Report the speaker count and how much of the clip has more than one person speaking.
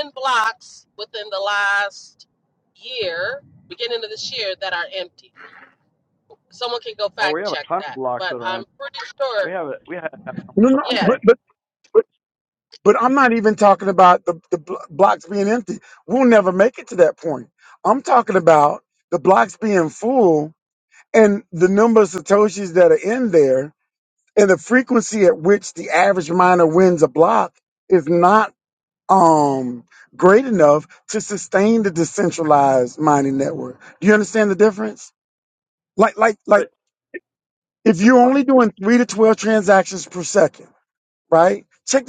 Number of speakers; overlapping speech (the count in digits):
3, about 6%